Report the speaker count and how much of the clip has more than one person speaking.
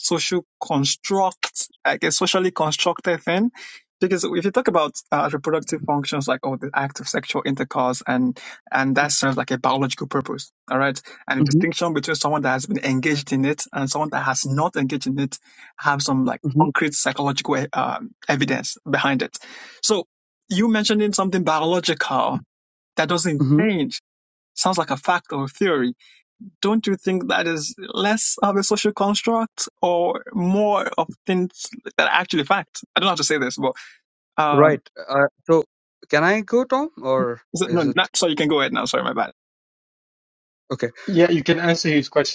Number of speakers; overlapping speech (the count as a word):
three, about 4%